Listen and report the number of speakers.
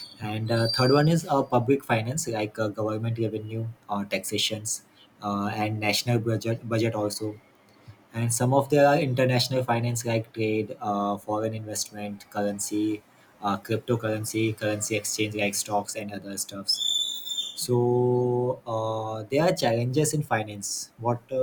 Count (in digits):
1